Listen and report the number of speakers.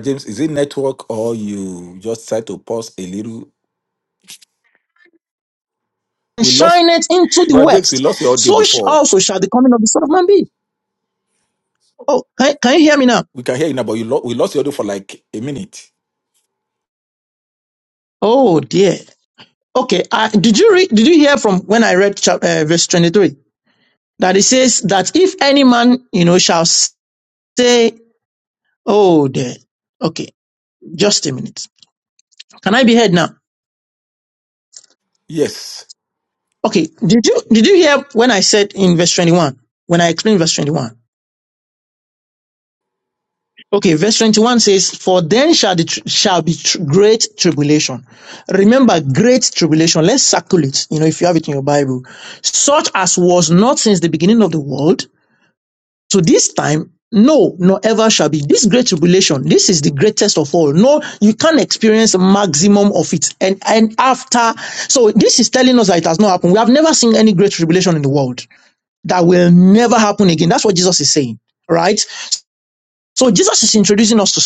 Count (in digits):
2